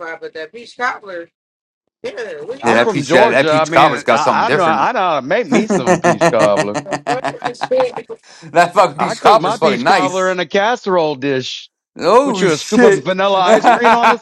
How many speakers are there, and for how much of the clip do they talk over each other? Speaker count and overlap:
3, about 38%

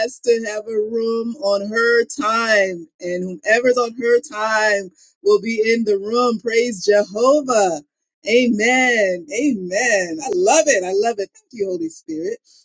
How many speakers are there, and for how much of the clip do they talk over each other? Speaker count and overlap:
1, no overlap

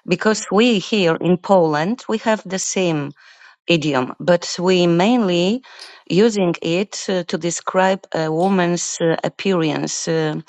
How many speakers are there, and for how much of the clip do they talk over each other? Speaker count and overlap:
1, no overlap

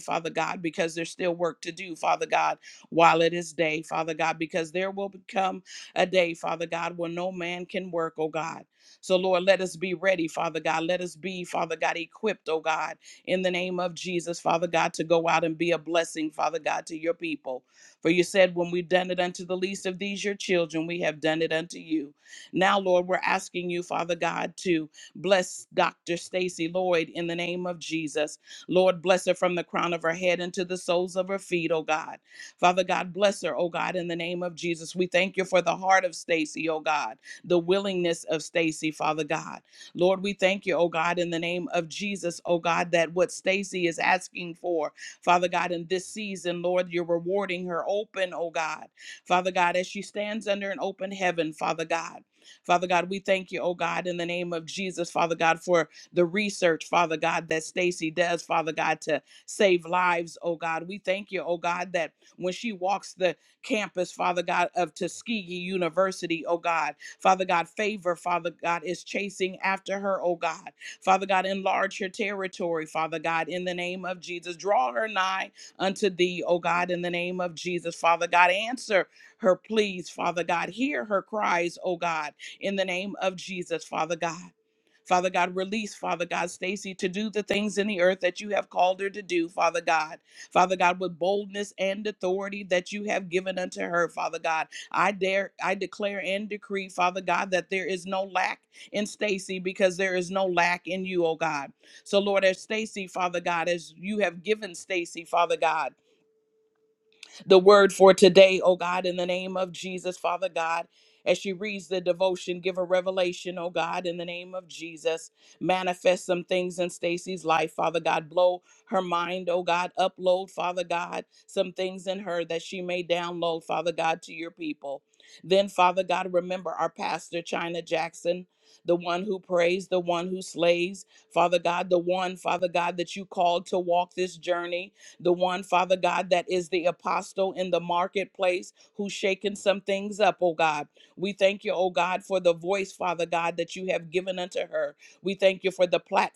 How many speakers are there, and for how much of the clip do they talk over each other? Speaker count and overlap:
1, no overlap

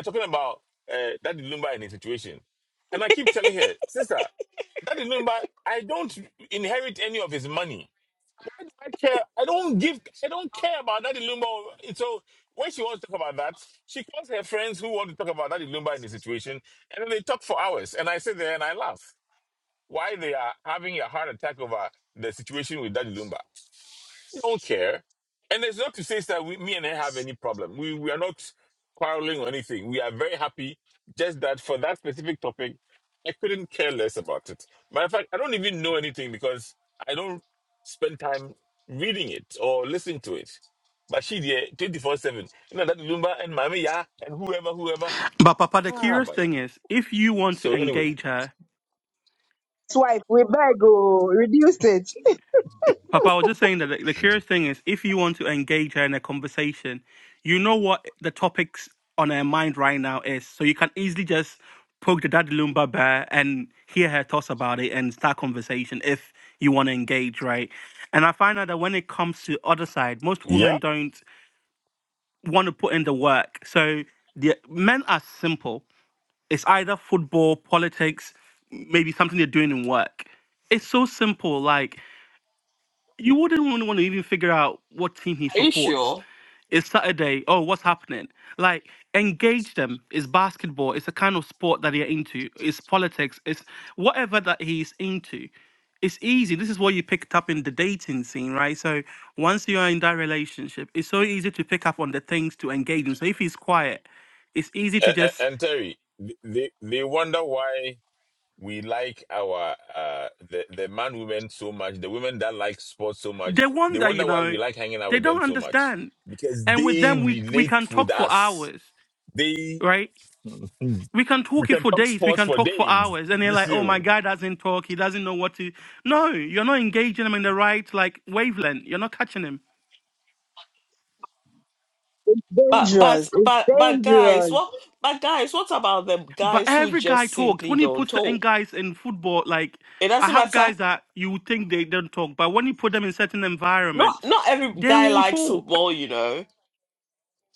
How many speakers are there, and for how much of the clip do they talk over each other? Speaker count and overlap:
4, about 8%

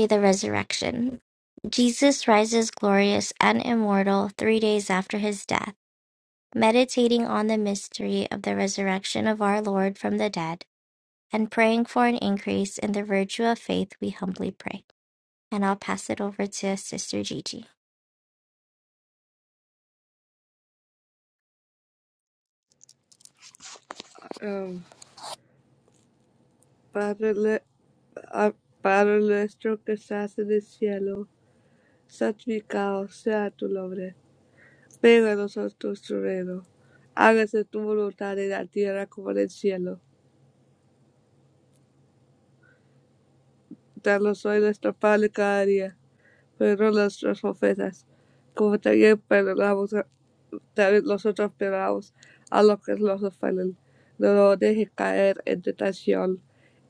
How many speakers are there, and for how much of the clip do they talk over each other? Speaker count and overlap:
2, no overlap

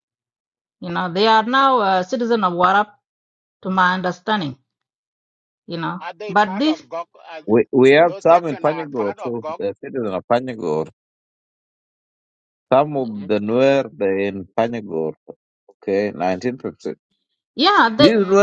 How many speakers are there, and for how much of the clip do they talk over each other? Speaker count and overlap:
3, about 14%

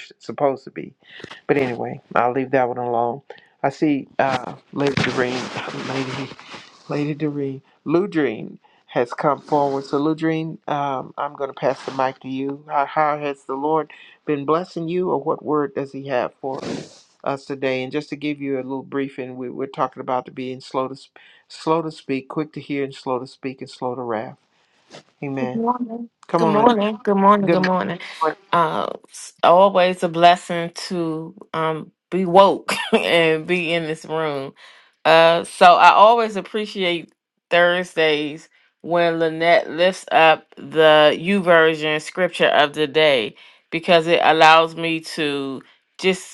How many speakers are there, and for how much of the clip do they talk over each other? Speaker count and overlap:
2, about 2%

